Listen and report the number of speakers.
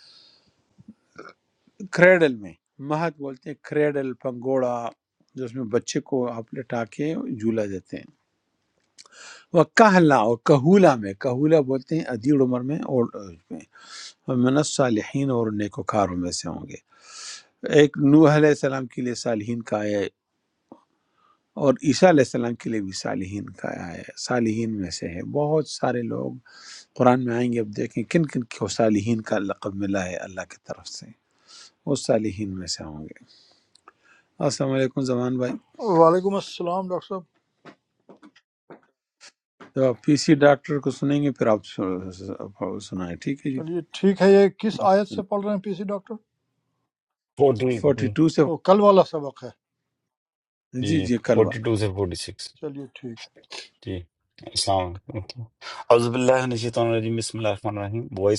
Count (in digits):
3